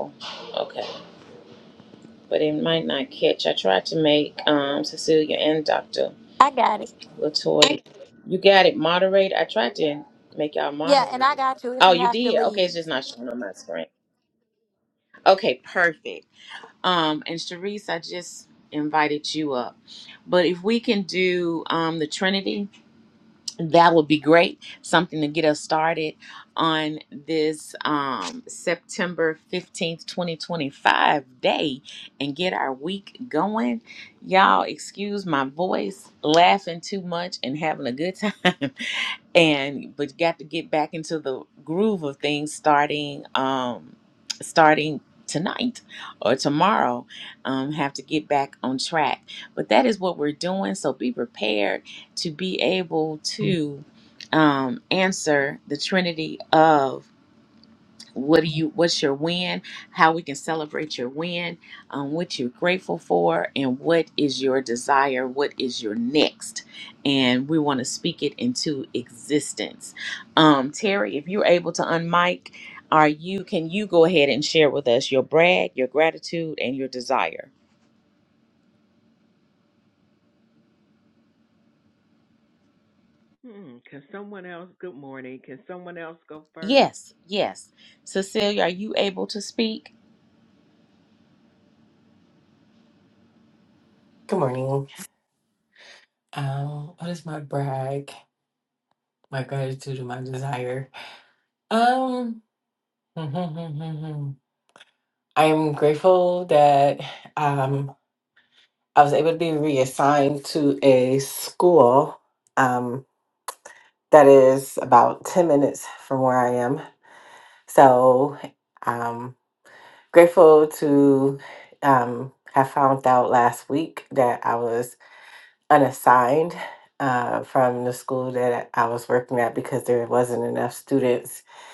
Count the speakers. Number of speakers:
4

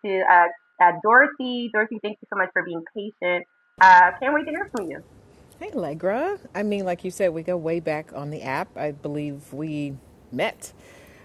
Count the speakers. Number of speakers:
2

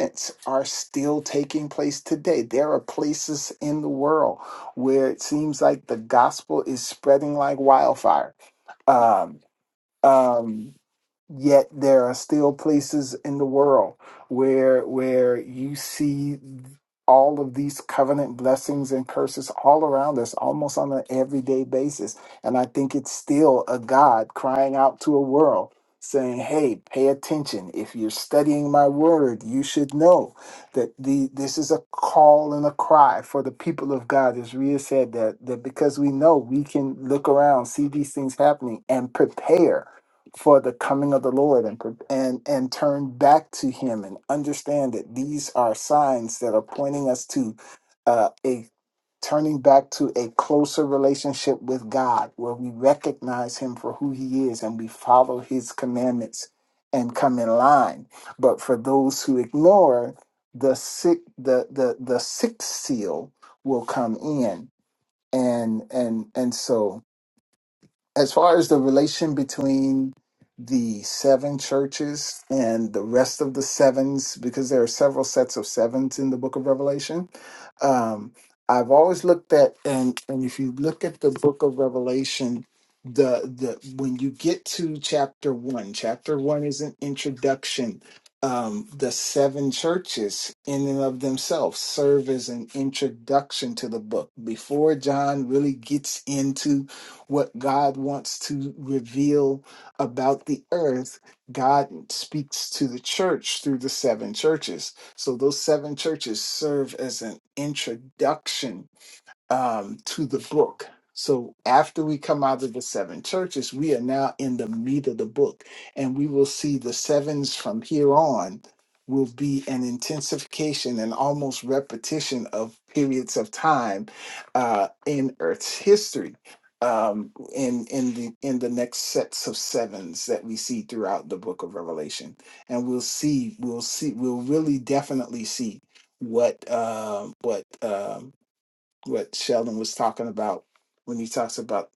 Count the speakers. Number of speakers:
1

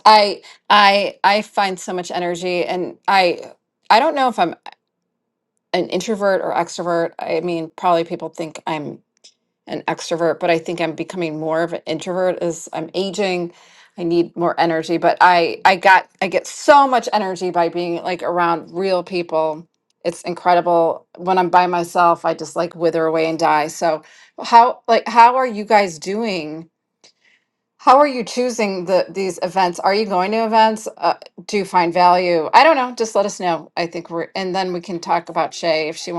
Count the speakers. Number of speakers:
1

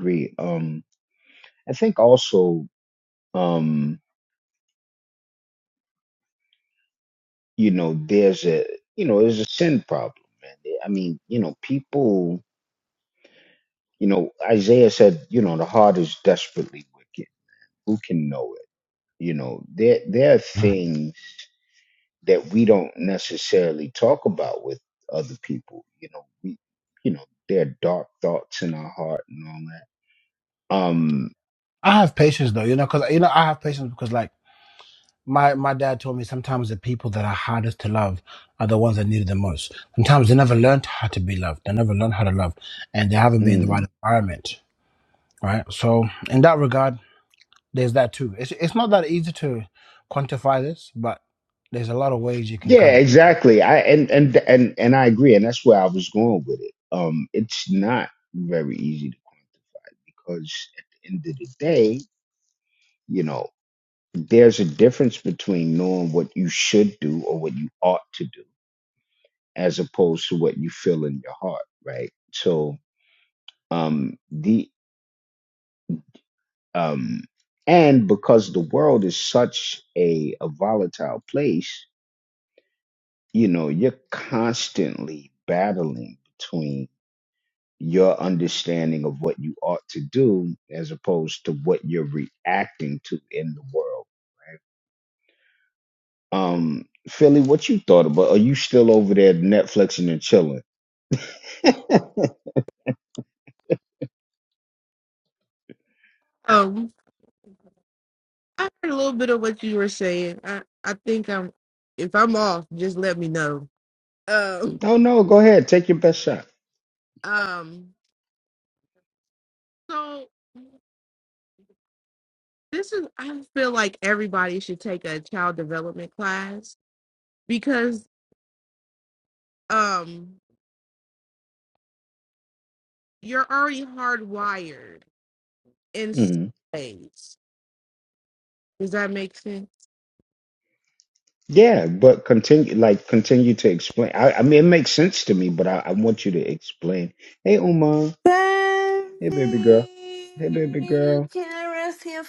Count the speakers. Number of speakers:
4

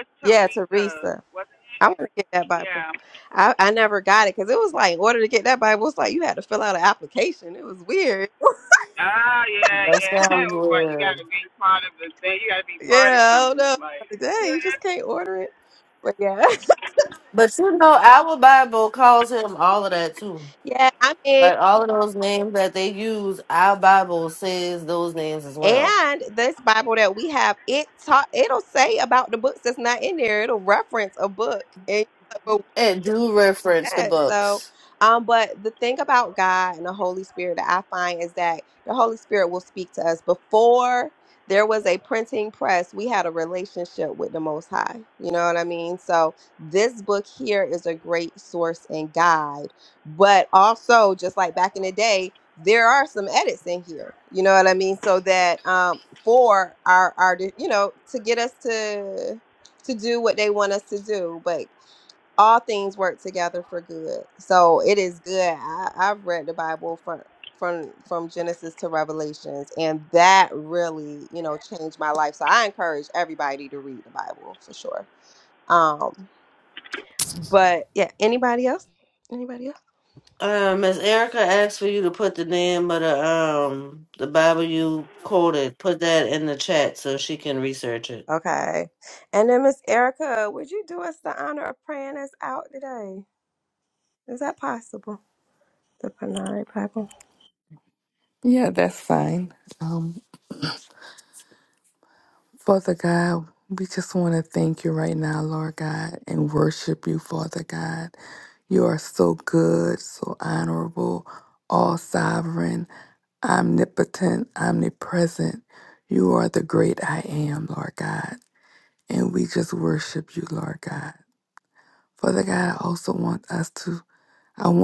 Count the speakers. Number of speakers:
4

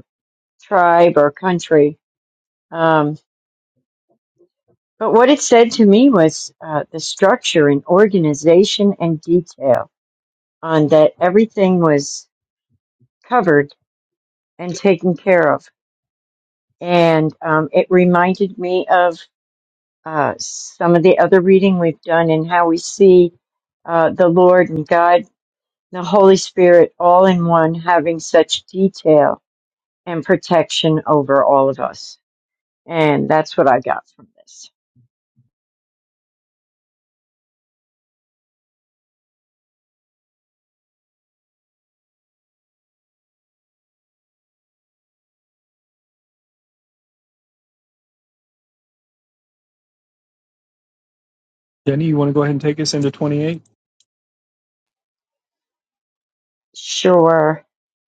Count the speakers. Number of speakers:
2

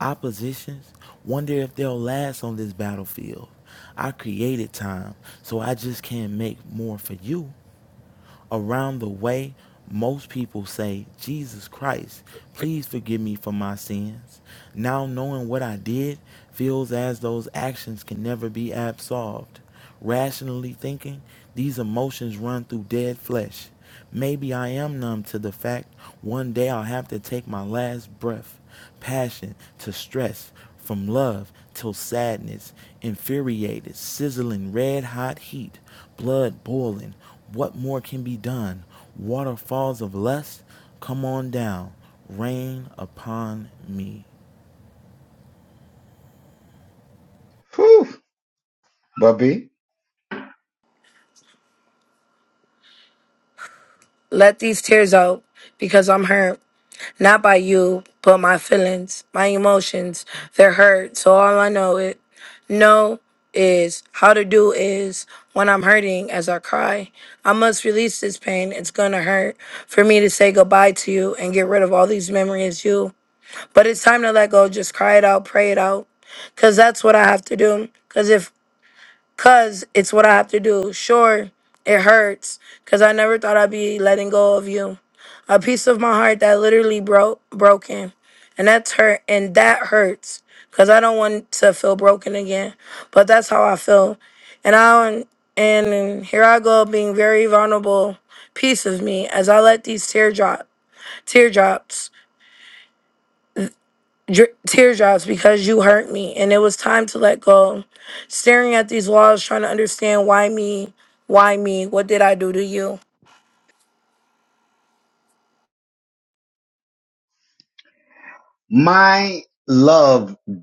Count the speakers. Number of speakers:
3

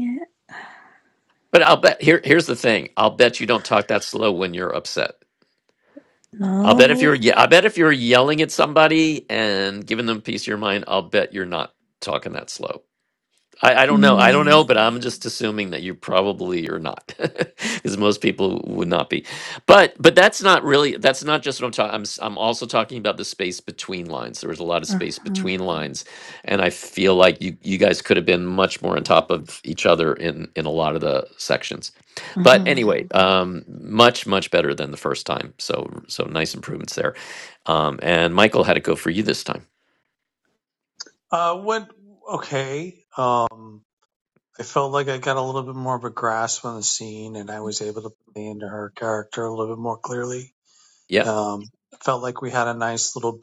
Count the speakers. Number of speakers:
3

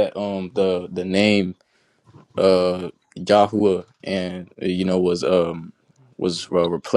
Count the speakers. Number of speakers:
1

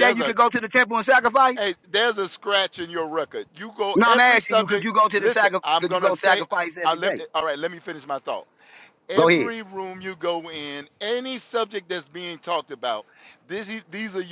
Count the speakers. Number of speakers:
2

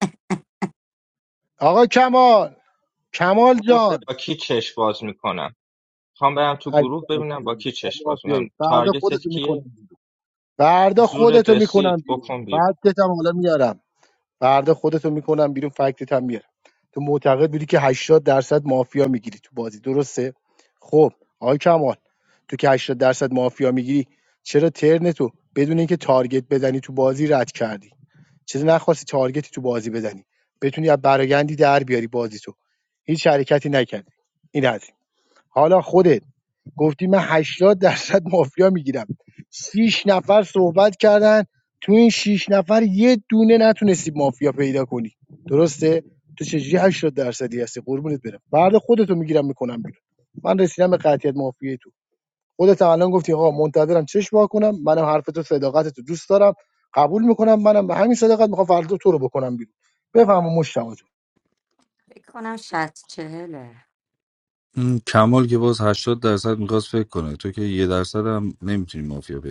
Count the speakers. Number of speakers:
4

